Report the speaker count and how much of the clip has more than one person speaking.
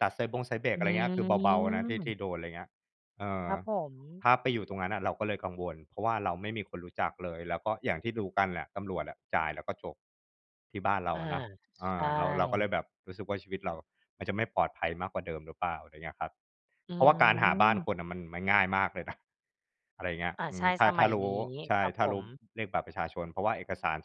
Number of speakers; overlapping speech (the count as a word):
two, about 11%